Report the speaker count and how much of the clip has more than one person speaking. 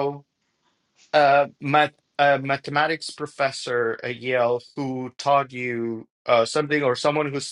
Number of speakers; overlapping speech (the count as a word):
one, no overlap